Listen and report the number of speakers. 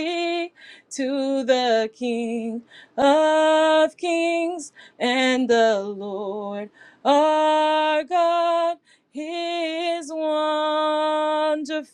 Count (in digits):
1